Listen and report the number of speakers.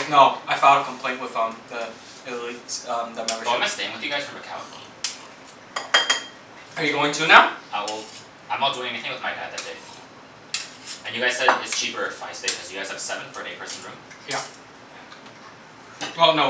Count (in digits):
2